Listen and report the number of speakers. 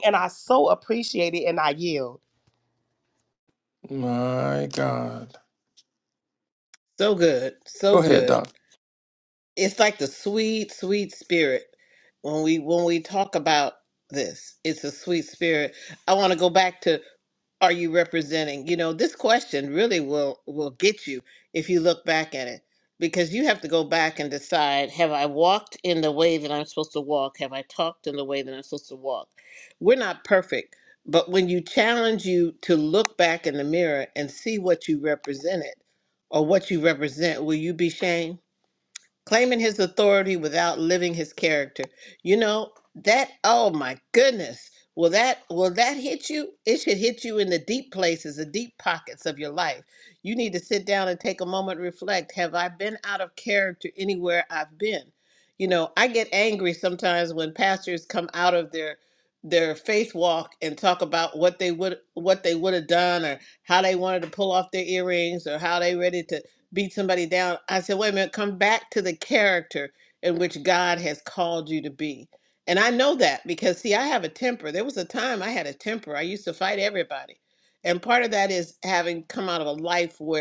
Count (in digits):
3